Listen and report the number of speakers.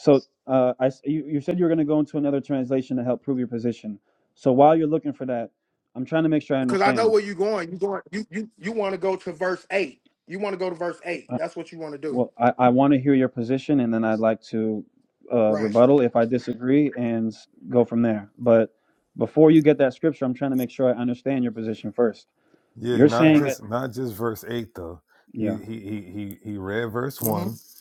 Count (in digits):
3